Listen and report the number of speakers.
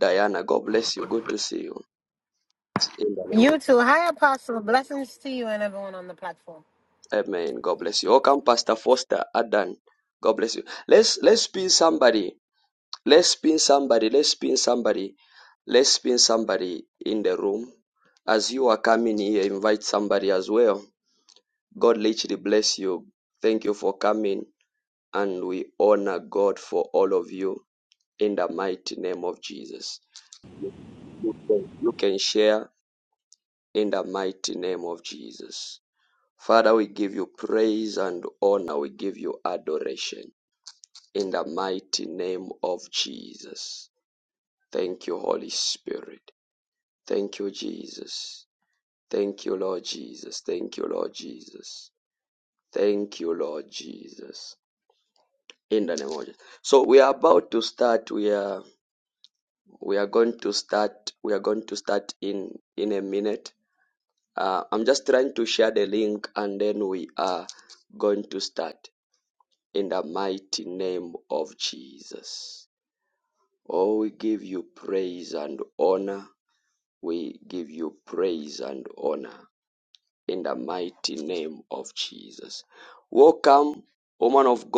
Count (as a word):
two